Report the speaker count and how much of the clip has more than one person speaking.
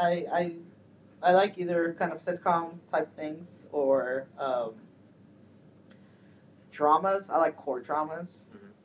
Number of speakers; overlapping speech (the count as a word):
one, no overlap